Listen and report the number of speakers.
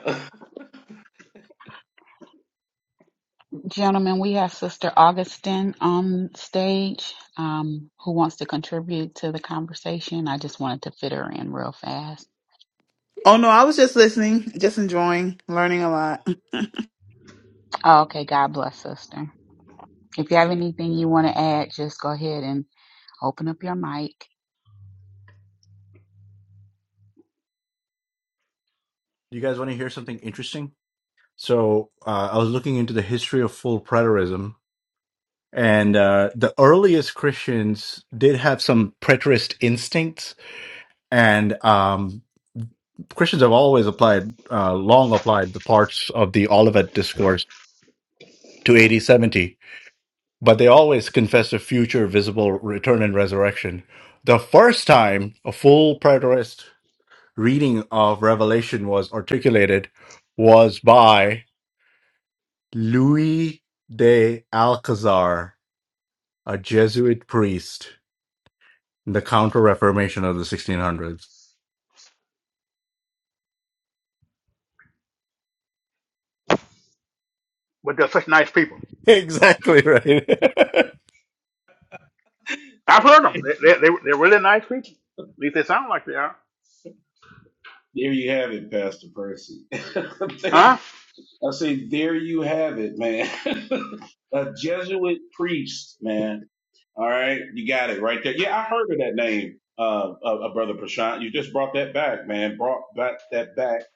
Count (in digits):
5